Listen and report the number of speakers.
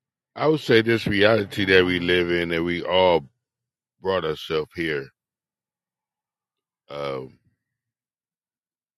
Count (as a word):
one